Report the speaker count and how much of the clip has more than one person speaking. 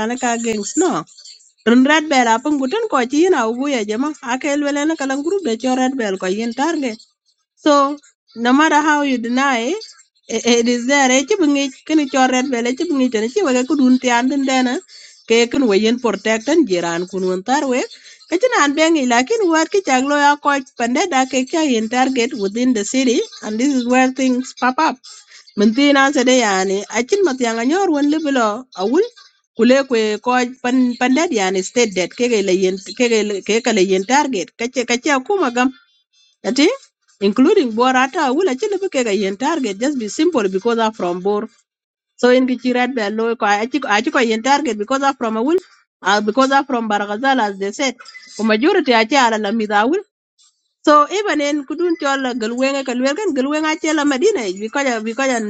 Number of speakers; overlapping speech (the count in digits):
1, no overlap